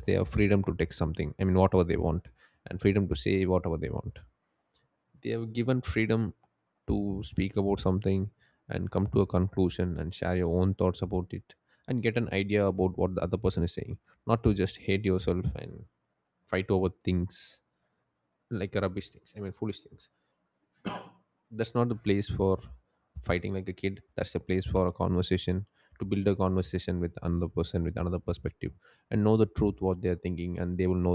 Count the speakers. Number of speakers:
1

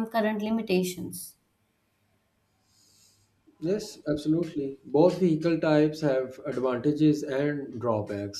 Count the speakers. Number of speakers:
2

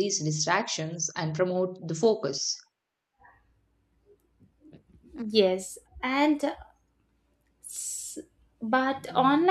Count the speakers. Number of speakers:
2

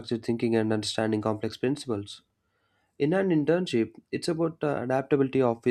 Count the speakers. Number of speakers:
1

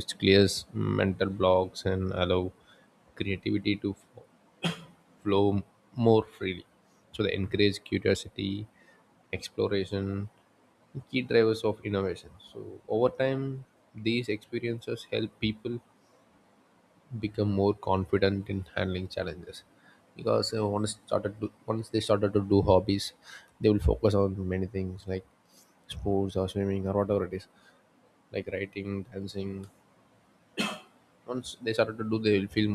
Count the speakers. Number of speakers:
1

